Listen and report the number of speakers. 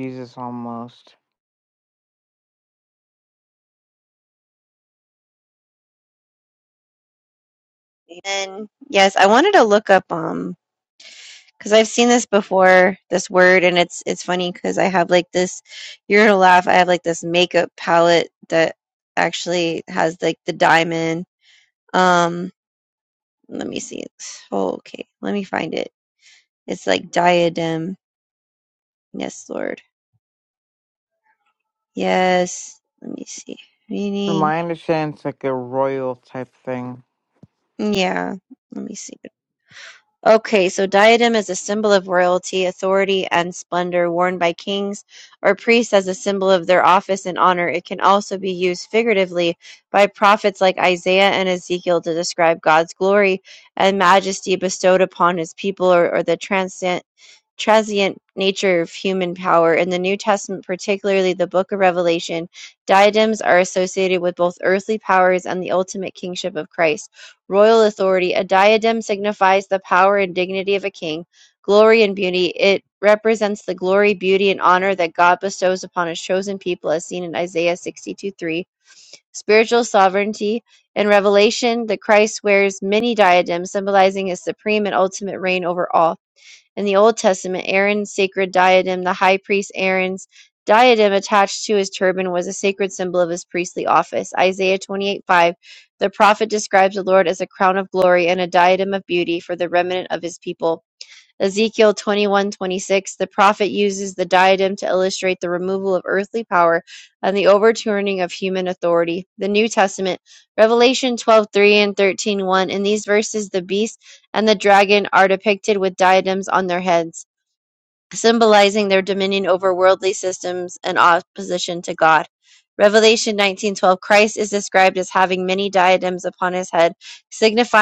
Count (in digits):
2